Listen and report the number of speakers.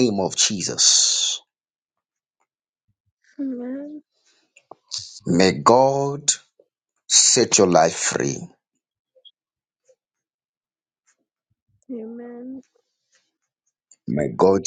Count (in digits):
2